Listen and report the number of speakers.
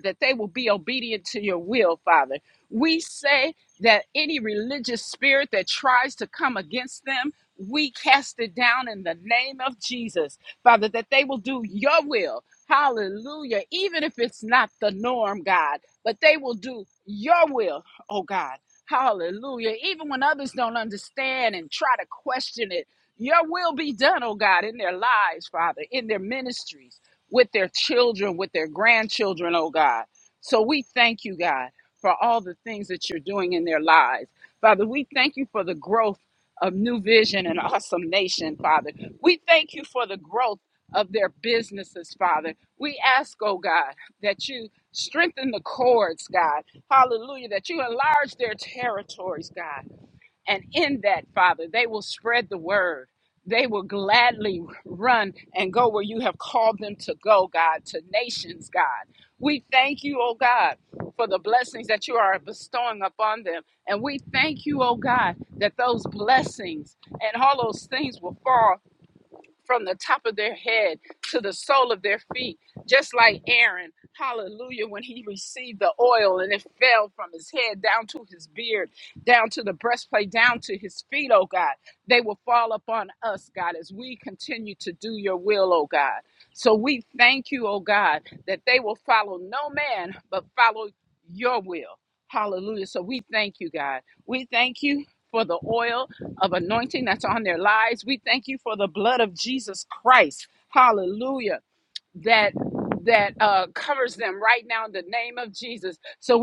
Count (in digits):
1